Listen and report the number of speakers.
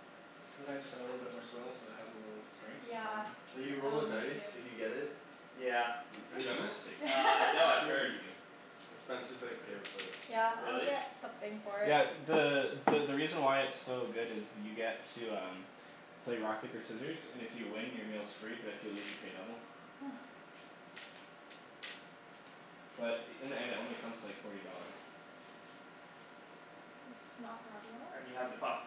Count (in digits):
4